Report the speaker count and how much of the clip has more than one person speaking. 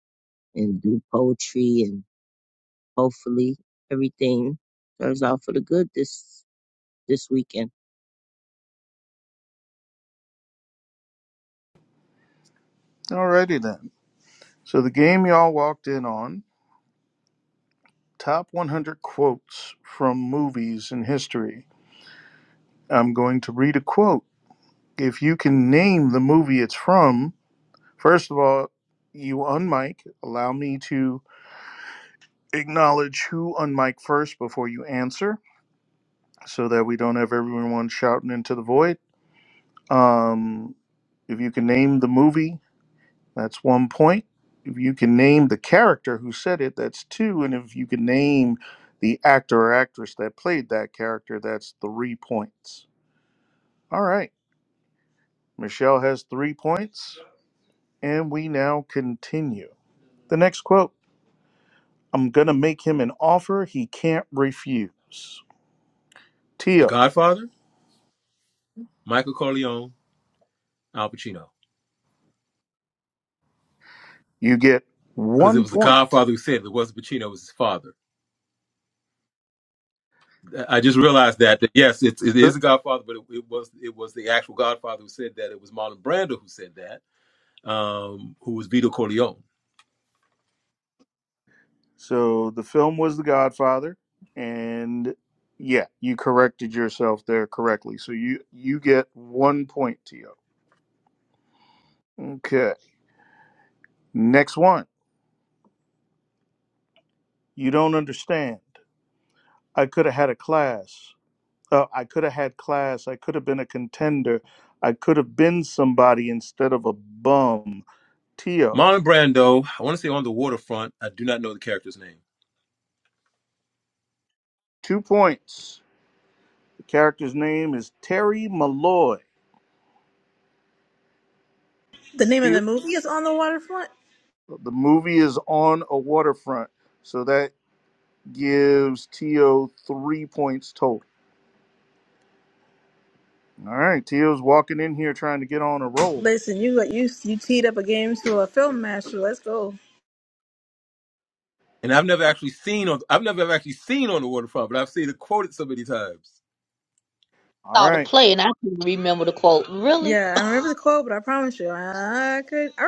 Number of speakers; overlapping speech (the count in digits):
5, about 1%